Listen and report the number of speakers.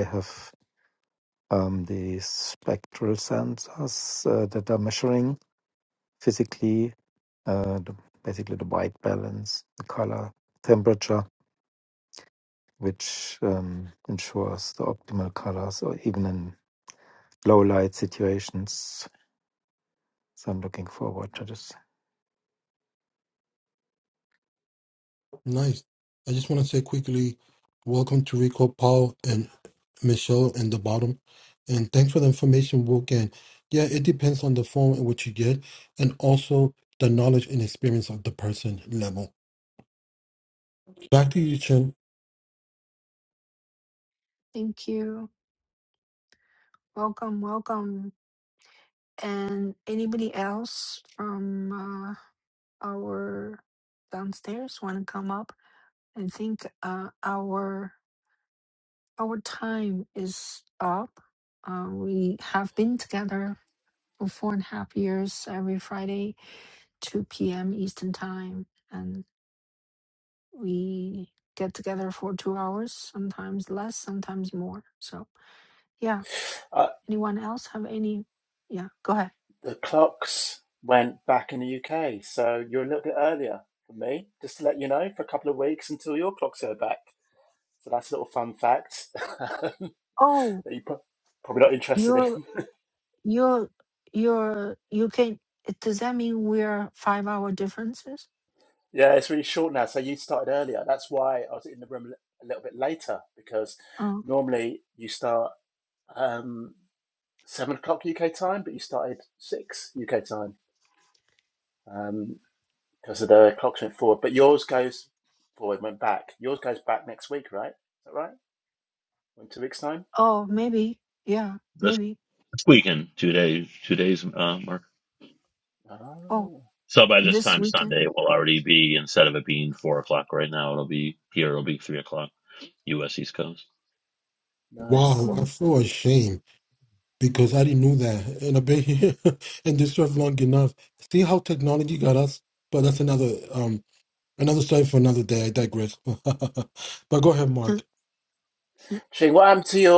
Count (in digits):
5